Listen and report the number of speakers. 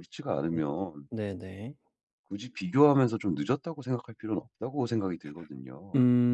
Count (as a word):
two